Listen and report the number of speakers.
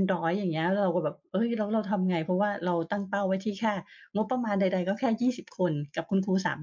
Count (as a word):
one